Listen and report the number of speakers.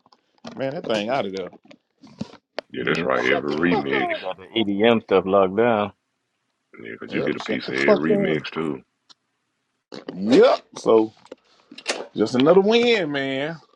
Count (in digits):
3